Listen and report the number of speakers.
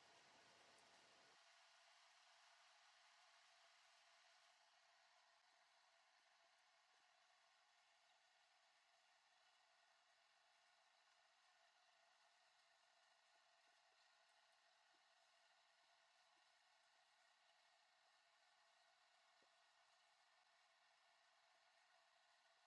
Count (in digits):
0